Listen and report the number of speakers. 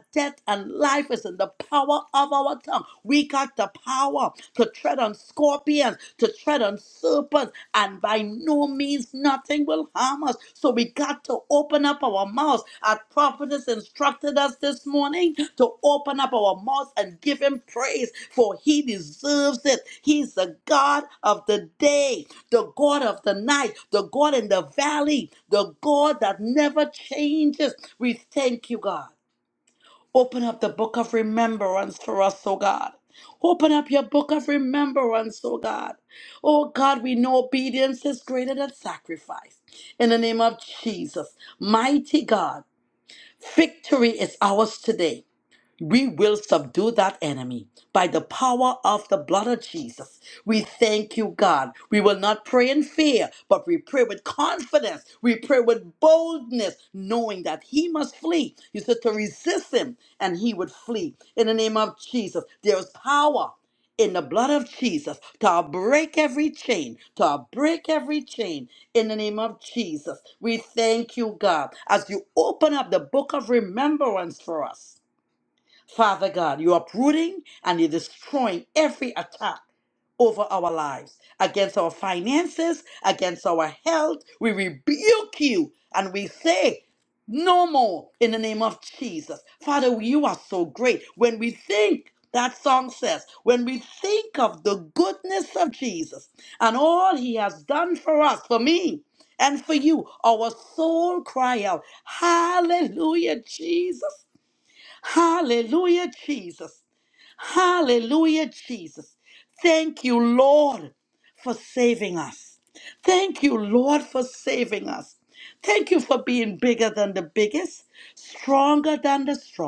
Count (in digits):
1